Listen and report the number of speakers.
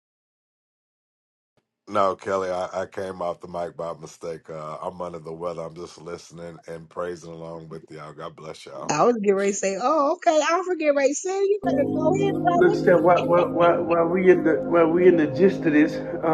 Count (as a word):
three